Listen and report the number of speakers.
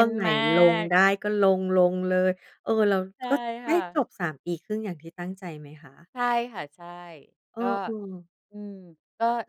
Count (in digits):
2